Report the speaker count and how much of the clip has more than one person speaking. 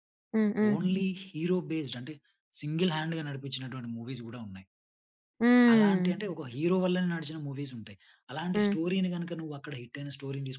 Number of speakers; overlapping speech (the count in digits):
2, about 7%